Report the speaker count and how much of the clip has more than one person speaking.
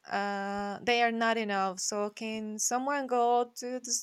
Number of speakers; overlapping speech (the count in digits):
1, no overlap